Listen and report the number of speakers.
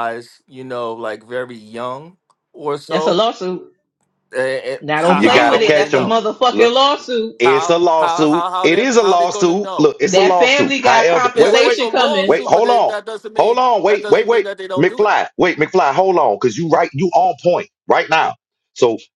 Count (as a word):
three